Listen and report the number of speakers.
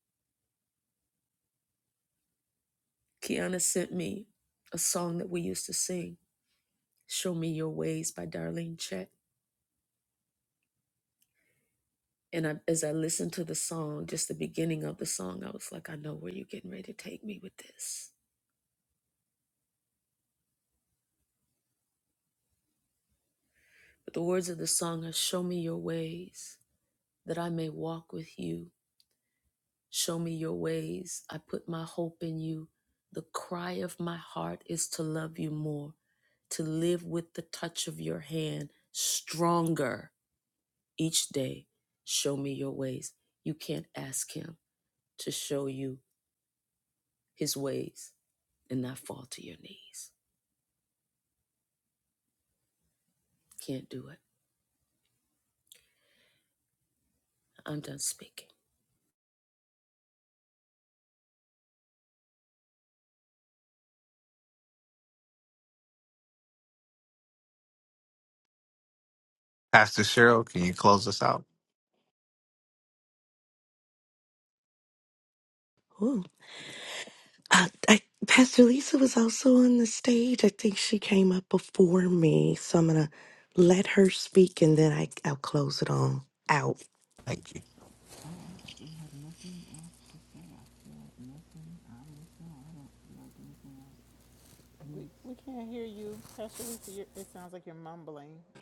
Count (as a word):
four